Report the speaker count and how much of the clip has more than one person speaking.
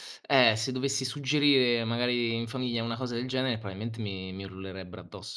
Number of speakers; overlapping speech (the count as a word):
one, no overlap